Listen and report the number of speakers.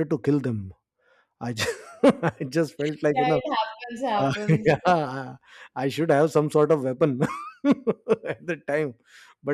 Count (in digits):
2